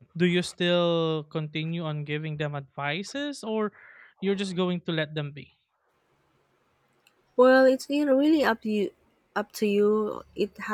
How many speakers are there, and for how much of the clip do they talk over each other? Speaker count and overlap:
two, no overlap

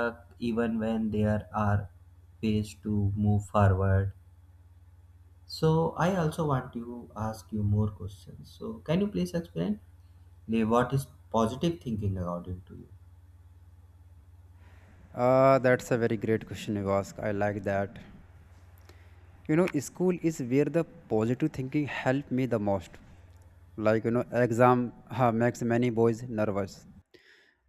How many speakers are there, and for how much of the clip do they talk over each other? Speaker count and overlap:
two, no overlap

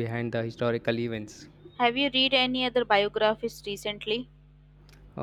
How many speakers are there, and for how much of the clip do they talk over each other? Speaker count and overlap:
two, no overlap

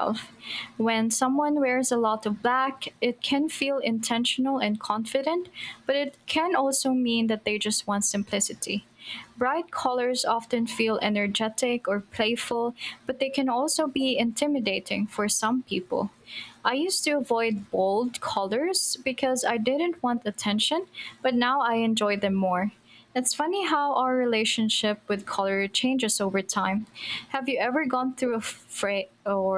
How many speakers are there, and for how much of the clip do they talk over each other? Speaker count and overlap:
one, no overlap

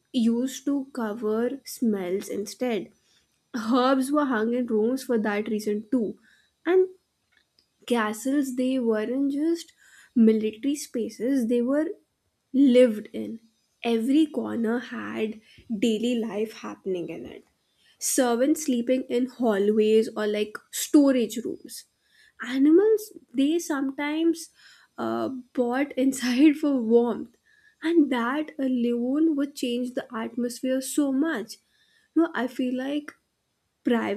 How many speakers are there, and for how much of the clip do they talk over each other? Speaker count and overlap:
one, no overlap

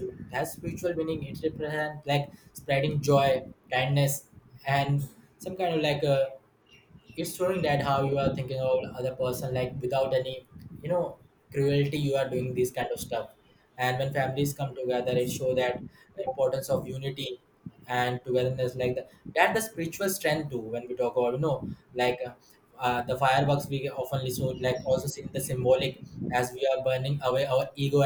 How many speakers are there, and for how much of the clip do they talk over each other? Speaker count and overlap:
one, no overlap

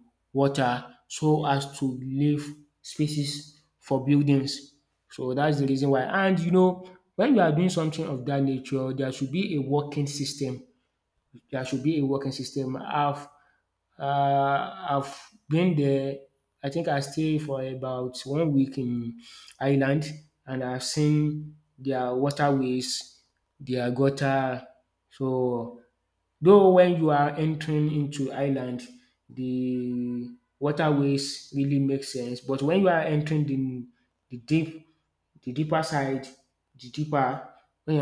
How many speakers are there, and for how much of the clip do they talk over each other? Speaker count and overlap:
one, no overlap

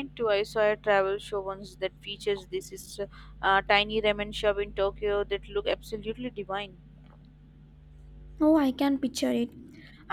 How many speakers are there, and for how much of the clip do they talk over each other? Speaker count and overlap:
two, no overlap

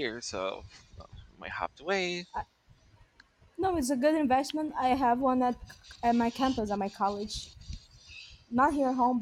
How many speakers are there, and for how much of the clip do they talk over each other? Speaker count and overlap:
two, no overlap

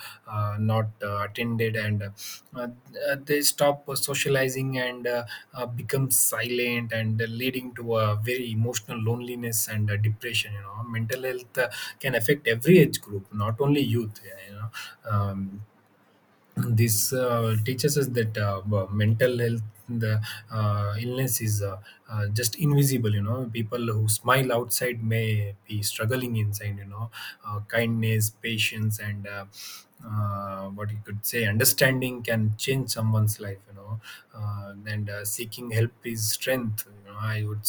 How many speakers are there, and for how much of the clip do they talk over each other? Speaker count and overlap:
one, no overlap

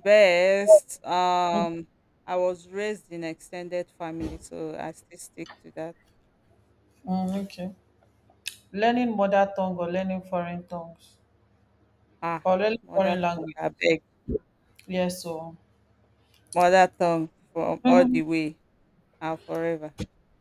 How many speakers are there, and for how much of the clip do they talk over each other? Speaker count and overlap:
two, about 3%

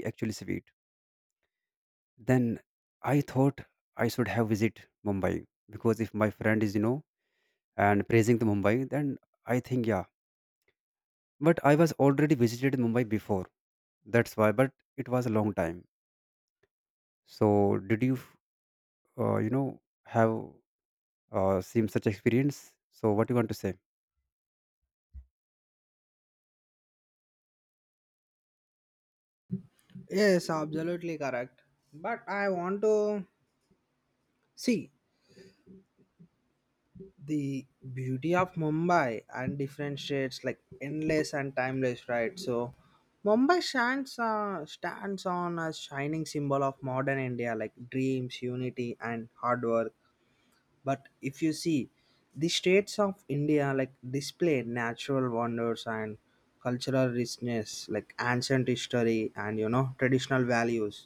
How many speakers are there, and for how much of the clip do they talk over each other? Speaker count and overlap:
two, no overlap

